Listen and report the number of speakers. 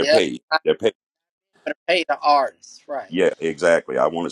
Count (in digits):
2